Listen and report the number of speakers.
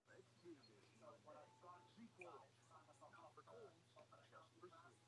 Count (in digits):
0